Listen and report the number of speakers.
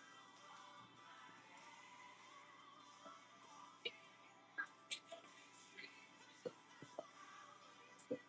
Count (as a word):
zero